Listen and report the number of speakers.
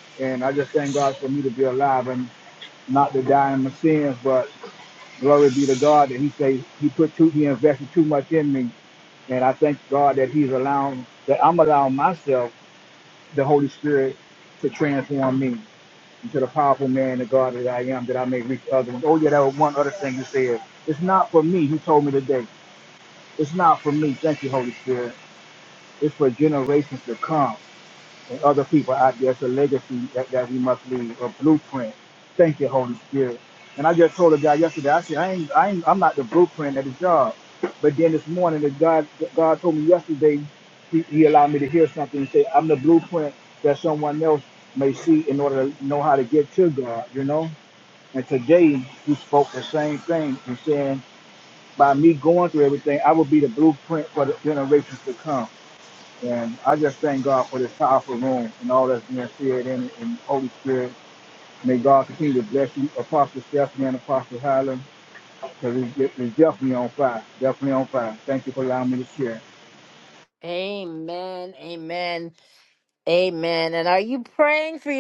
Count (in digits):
2